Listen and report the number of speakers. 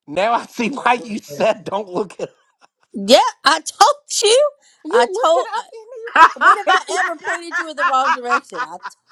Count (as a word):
three